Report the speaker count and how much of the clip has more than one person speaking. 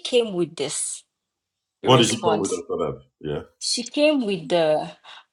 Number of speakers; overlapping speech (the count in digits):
2, about 12%